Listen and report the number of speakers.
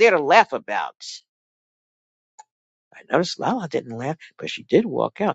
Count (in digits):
1